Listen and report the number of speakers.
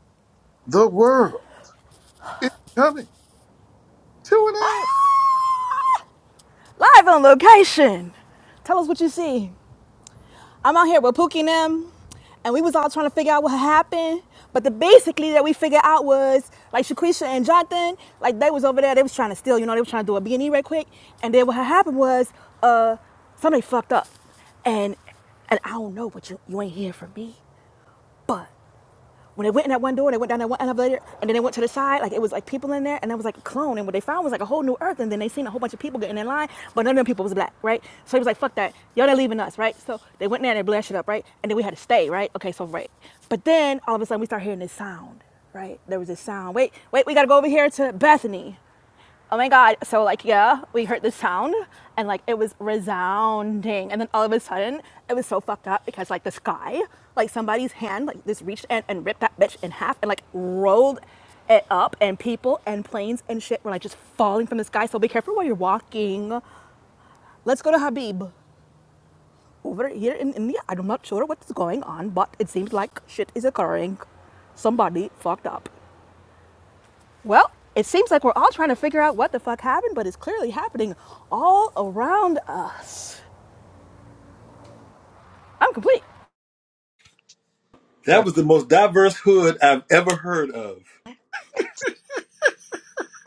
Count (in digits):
3